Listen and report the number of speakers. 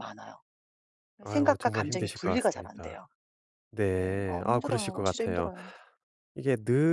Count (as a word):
two